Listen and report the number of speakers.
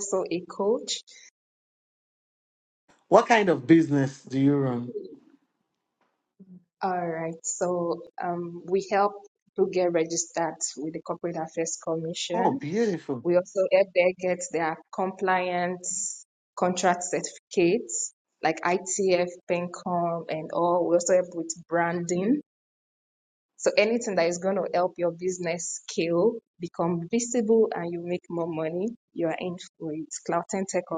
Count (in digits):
2